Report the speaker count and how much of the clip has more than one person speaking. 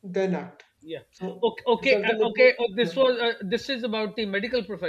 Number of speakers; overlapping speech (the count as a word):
two, about 17%